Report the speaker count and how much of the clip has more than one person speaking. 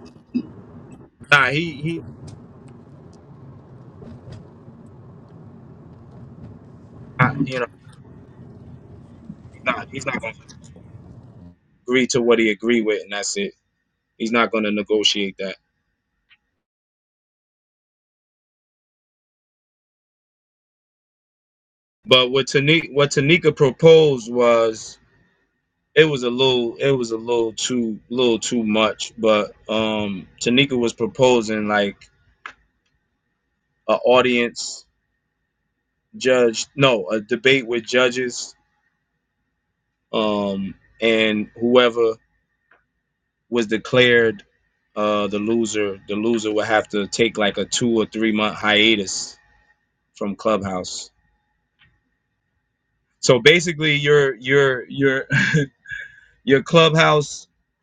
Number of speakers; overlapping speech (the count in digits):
1, no overlap